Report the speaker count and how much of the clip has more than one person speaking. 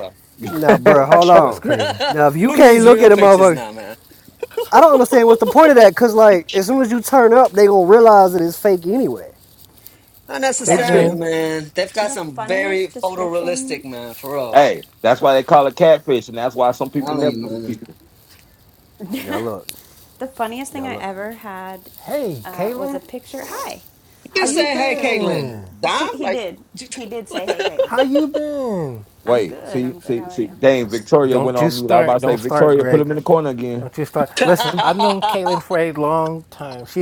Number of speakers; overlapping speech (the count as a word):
five, about 30%